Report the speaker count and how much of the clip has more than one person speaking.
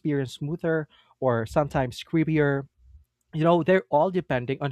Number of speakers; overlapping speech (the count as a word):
one, no overlap